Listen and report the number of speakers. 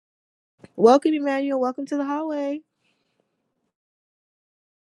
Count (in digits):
1